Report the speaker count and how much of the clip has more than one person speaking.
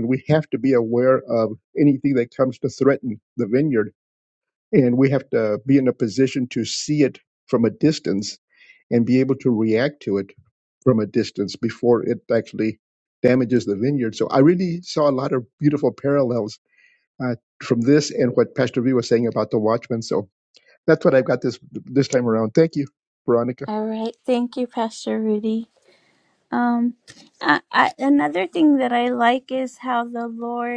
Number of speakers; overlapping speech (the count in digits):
2, no overlap